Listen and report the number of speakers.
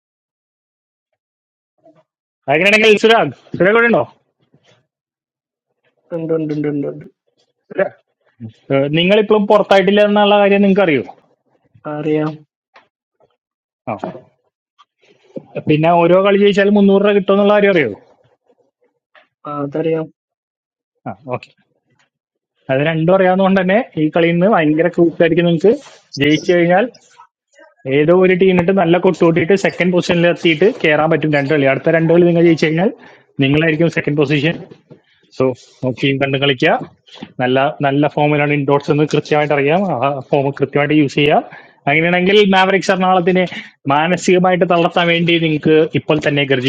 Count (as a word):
two